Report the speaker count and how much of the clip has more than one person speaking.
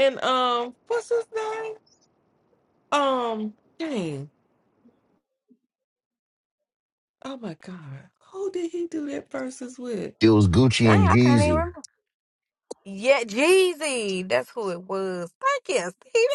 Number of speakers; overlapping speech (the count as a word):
three, about 5%